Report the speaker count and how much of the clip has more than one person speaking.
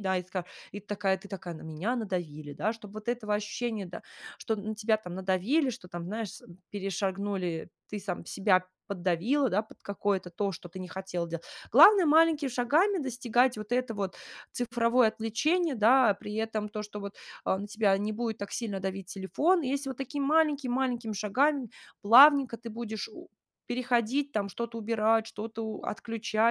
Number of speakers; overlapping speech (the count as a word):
one, no overlap